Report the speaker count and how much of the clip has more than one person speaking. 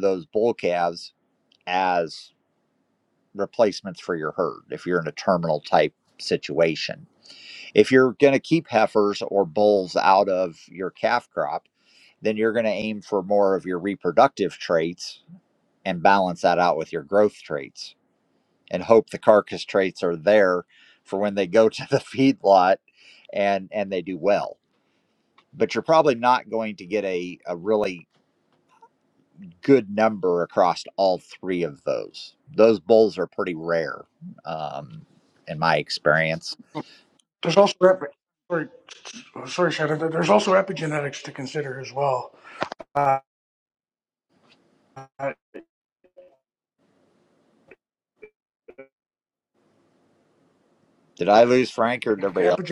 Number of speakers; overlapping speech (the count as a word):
two, under 1%